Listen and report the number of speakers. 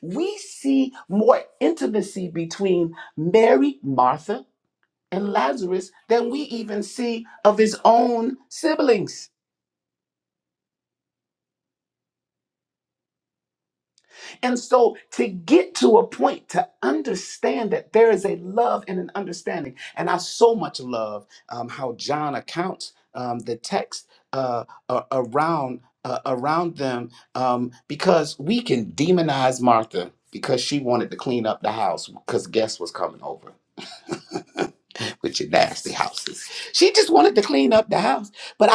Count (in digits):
1